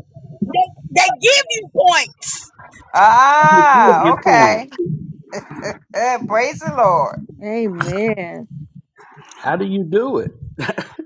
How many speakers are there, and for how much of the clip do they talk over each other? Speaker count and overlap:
four, about 12%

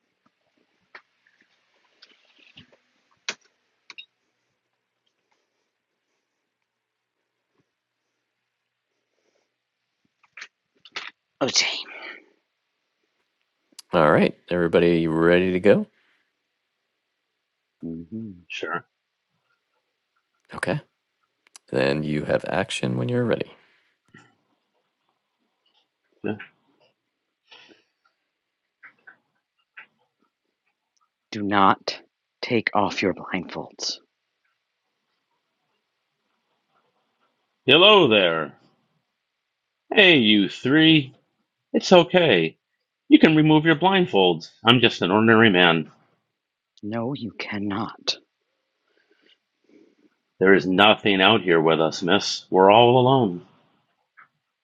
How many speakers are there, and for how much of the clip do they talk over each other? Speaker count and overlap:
three, no overlap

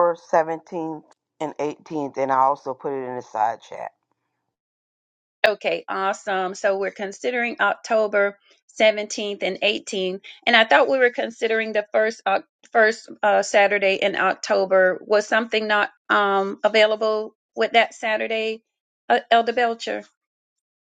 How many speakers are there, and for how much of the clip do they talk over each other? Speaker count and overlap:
two, no overlap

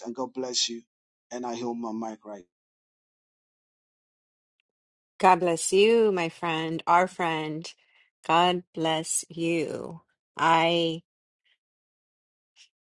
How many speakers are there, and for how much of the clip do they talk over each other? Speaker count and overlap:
two, no overlap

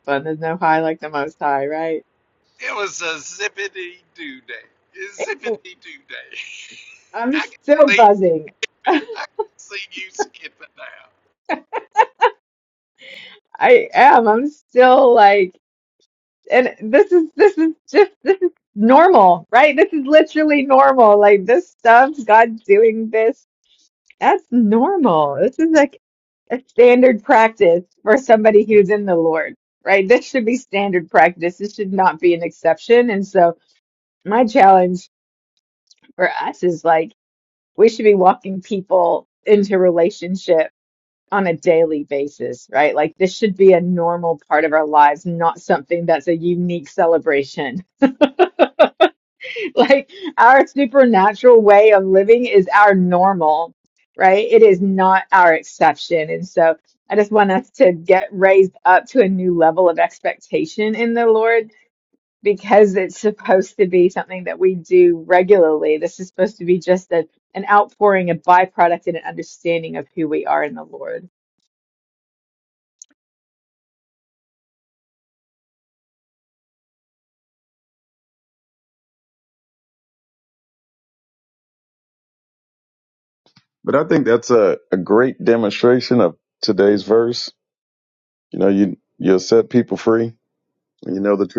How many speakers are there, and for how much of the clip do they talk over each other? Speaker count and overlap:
three, about 1%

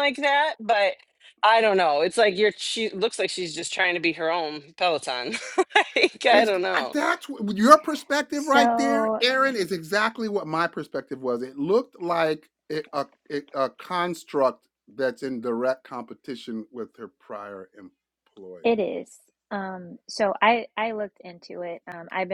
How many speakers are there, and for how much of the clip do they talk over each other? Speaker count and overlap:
three, about 4%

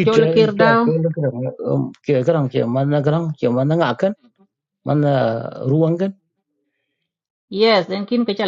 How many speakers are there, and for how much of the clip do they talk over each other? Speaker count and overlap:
two, about 10%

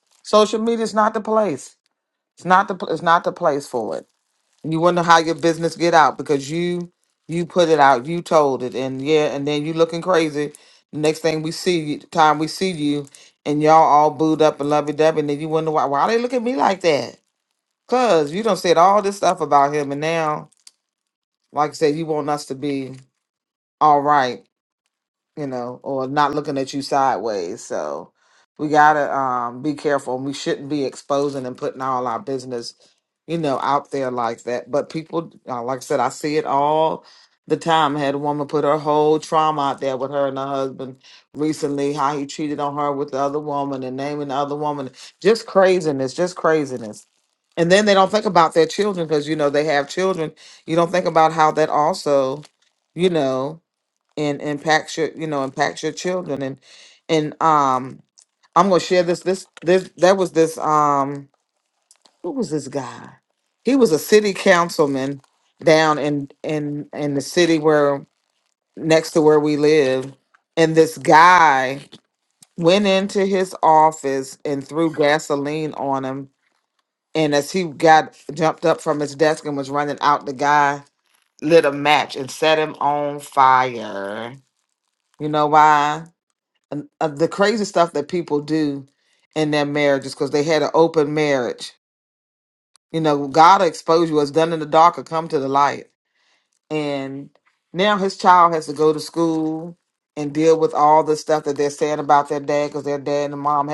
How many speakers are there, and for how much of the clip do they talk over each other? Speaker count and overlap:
one, no overlap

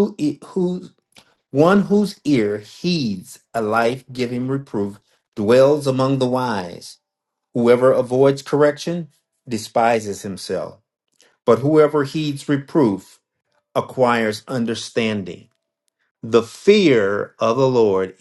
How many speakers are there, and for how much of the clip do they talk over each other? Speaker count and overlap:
one, no overlap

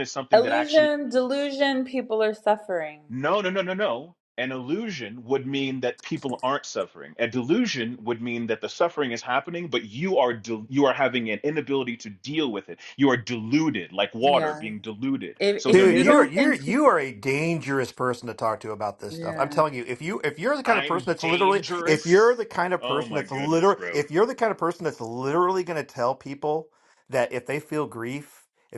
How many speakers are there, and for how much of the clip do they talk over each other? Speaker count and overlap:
three, about 20%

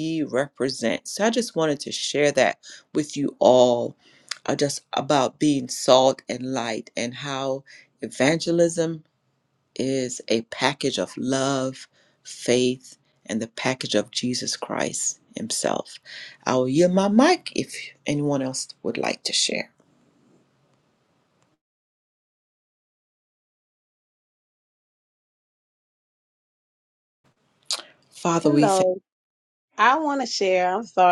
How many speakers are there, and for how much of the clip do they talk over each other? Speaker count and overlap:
two, about 1%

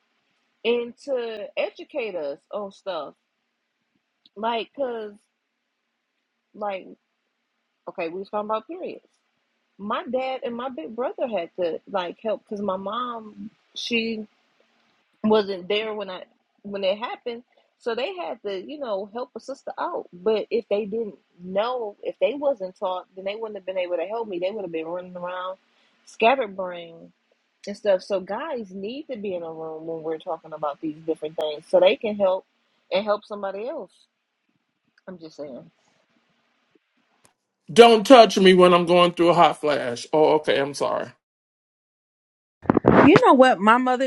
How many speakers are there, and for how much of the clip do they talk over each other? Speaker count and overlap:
three, no overlap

